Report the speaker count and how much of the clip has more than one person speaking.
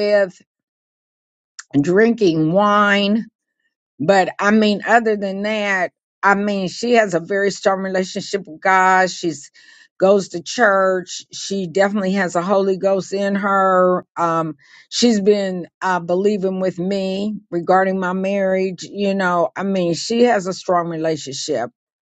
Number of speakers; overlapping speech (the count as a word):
one, no overlap